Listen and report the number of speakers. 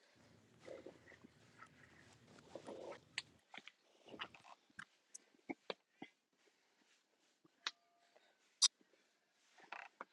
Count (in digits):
0